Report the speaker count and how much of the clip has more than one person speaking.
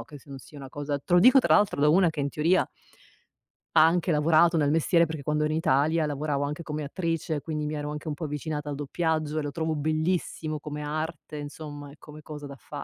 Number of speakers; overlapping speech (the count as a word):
one, no overlap